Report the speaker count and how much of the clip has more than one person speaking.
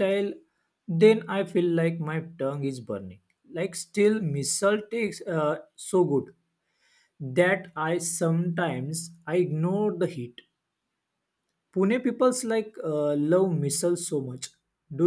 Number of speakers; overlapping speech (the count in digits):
1, no overlap